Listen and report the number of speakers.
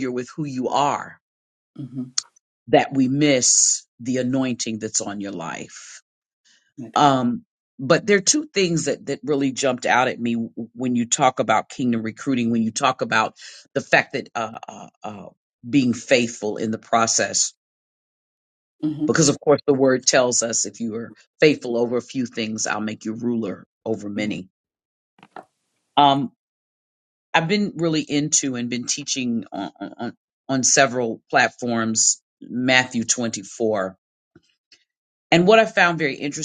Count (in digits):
2